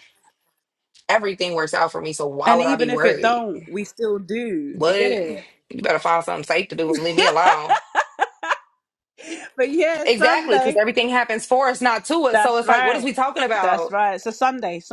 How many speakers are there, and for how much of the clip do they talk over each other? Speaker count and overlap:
two, about 22%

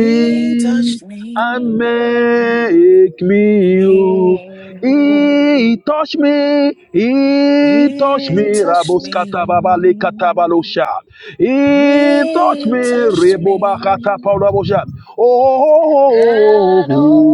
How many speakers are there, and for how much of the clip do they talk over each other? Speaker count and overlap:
two, about 47%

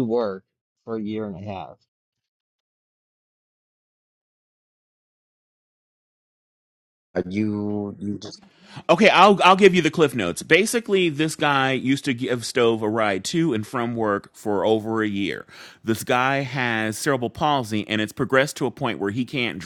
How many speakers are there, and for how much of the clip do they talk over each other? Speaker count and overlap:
three, no overlap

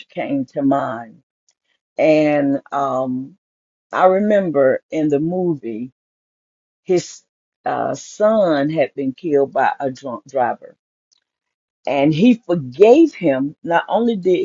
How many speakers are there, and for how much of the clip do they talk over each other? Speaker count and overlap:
one, no overlap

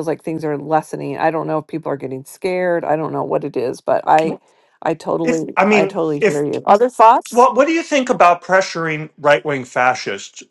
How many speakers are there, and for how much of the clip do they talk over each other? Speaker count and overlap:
two, about 11%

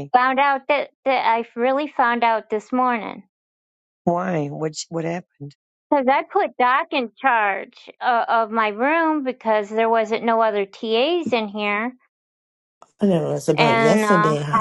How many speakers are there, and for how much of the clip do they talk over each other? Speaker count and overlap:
three, about 7%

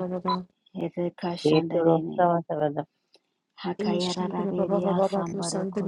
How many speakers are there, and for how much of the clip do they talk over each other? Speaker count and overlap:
three, about 43%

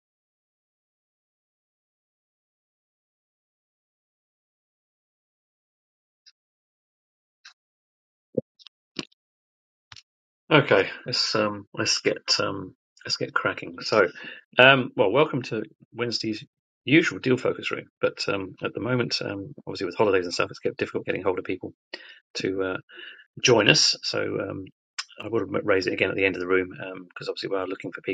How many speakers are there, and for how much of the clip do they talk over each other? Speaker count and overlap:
one, no overlap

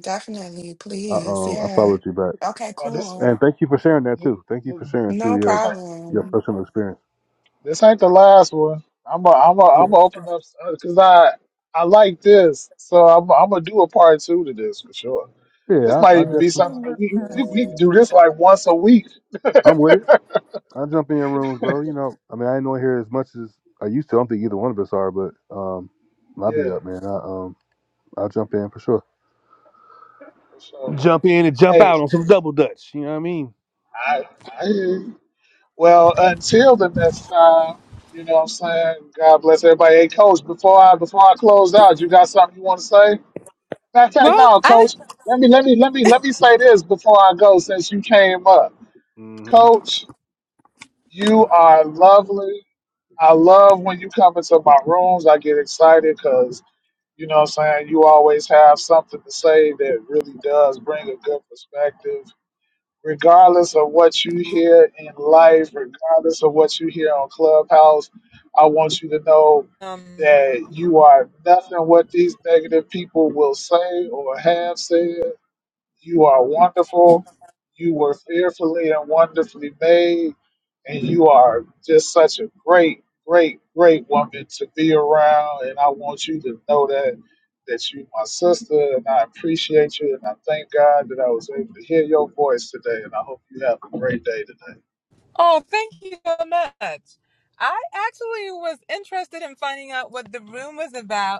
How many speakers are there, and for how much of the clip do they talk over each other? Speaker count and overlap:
four, about 5%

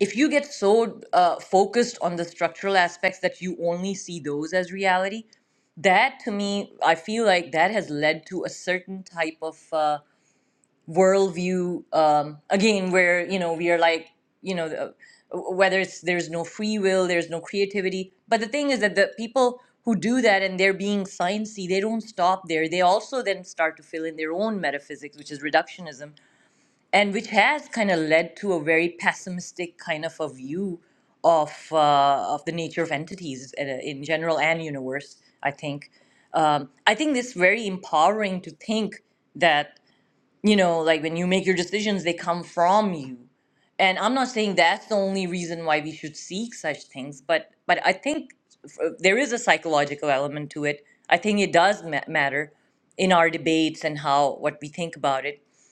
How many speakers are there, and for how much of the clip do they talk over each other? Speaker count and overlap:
one, no overlap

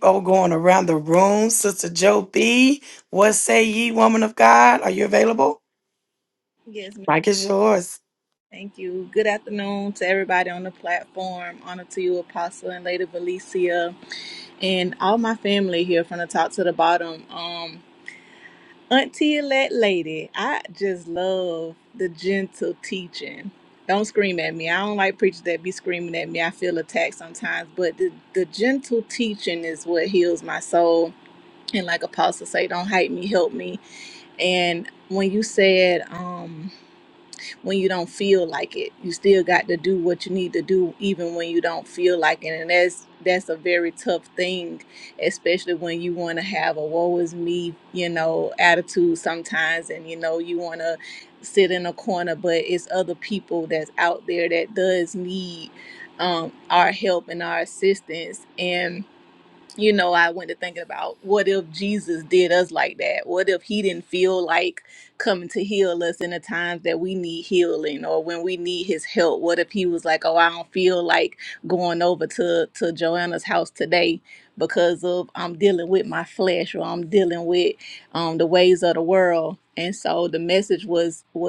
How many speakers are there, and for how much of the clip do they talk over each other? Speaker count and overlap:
two, no overlap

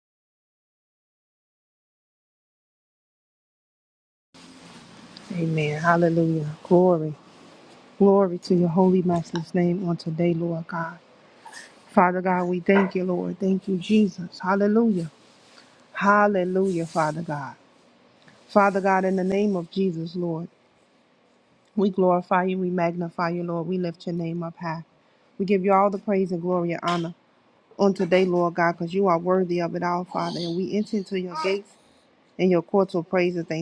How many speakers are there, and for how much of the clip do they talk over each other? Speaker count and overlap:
one, no overlap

